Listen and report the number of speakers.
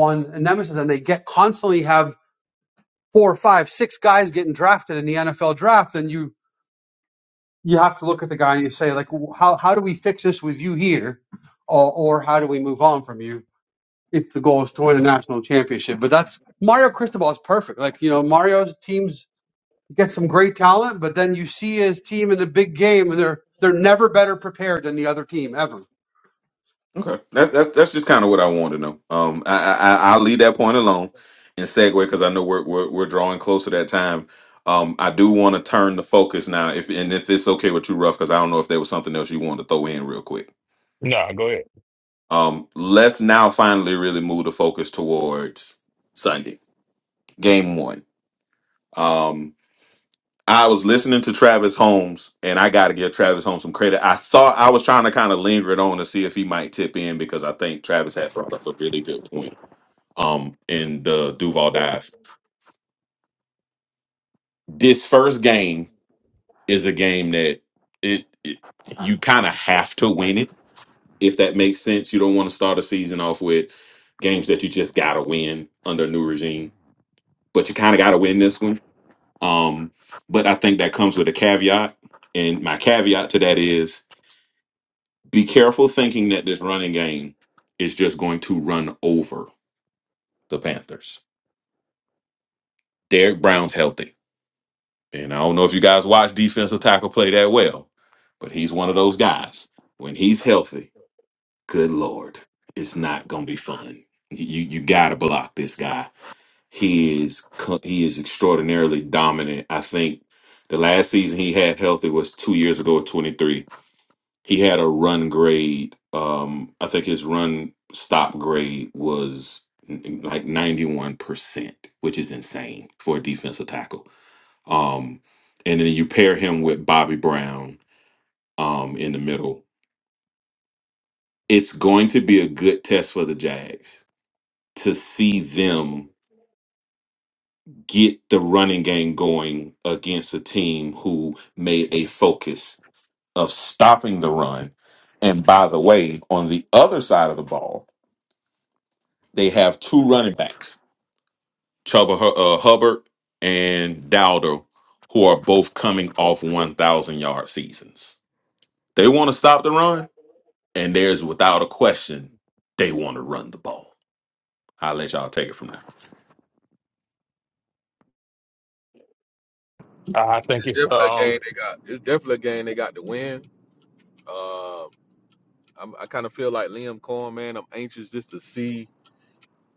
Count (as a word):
four